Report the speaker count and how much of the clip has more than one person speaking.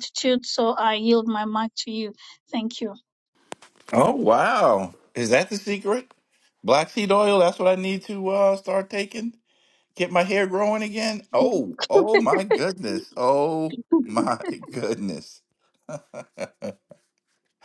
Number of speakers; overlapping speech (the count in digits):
2, no overlap